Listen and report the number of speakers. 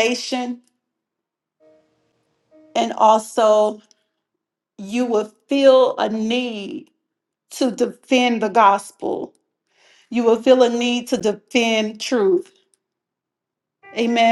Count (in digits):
1